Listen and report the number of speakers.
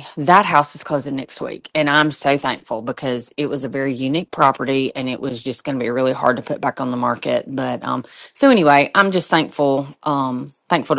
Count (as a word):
one